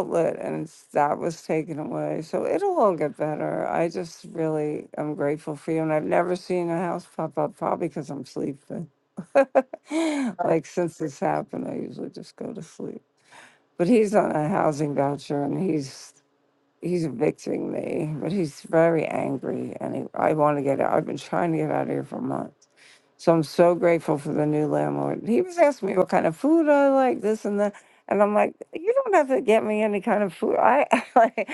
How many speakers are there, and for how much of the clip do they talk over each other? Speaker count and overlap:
1, no overlap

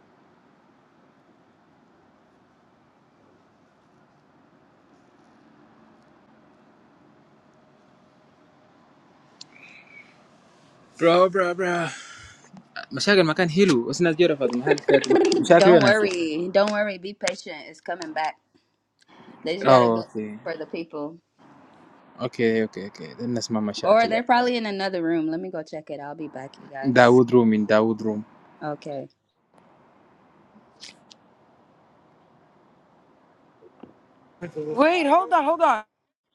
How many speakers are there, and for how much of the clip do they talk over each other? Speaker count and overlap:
3, about 4%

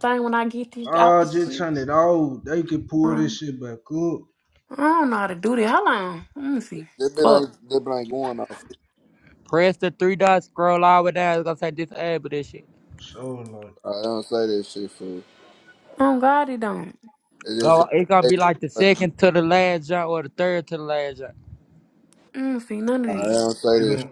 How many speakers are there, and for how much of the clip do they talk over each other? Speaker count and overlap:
4, about 10%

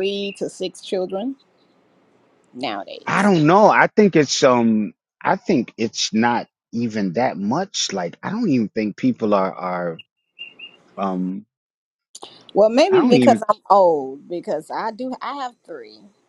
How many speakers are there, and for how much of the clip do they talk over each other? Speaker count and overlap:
2, about 5%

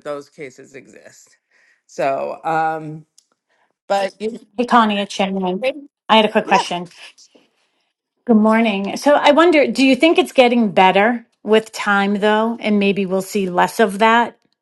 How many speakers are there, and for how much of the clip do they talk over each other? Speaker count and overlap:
2, about 1%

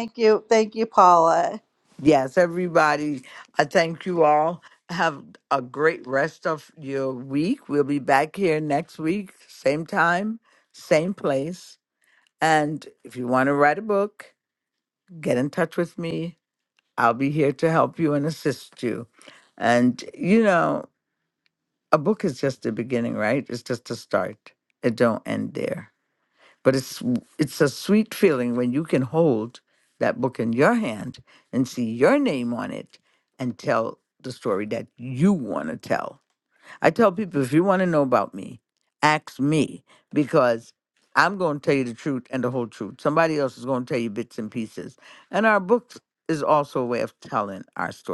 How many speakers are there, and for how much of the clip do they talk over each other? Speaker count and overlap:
2, no overlap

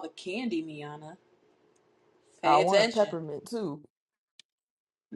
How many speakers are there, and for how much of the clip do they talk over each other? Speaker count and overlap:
2, about 13%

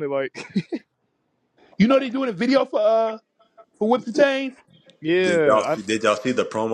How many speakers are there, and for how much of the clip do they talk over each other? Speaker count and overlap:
3, about 8%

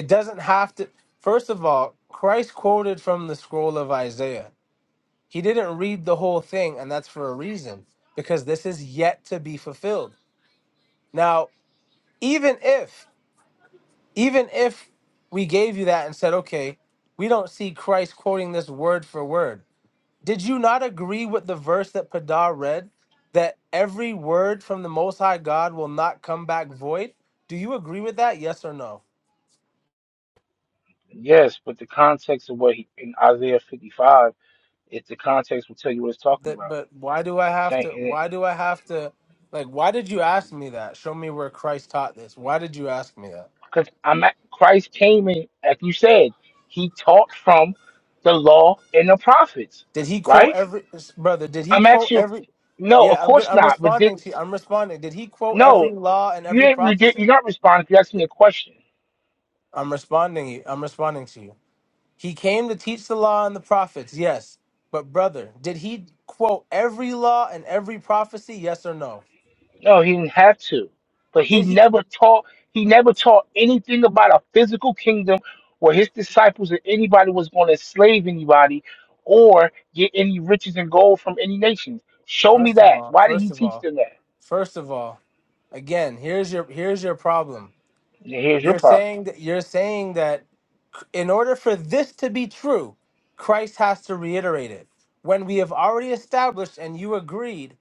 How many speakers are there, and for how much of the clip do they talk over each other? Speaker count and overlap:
2, about 6%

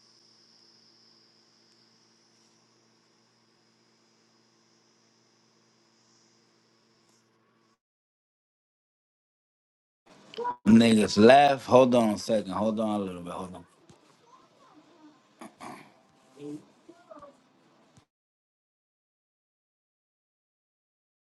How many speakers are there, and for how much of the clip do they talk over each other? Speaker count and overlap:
1, no overlap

